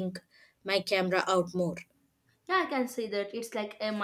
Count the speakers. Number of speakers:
2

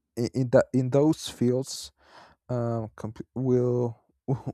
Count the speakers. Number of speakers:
1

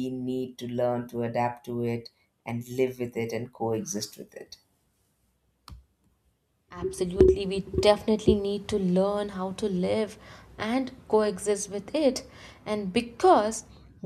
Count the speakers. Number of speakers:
2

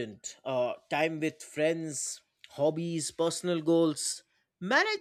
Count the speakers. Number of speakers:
1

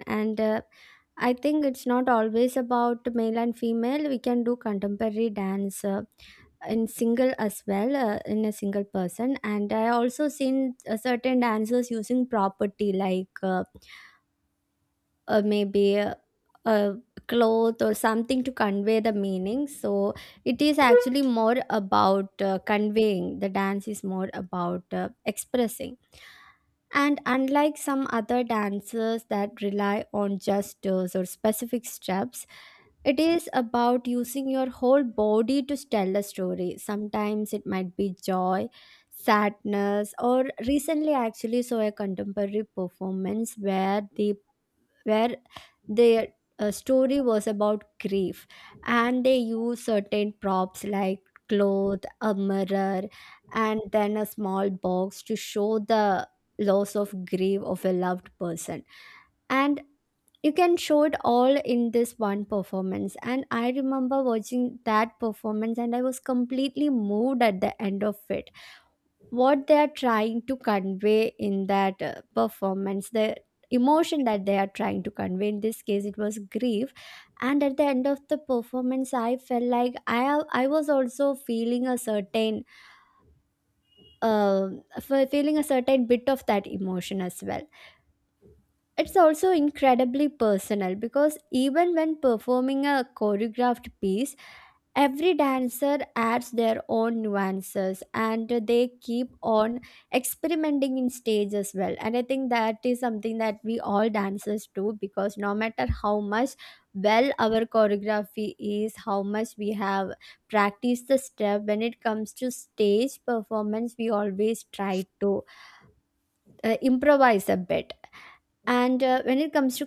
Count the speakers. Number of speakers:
1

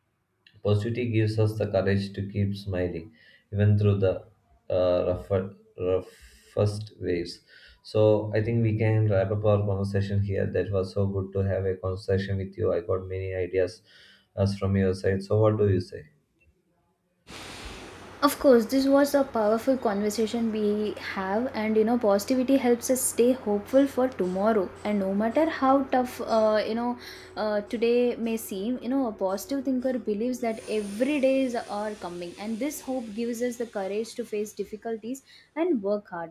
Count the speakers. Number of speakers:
2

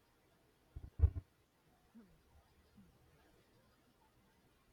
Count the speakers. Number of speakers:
0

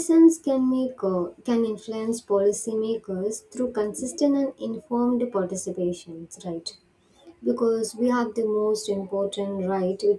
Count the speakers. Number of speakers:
1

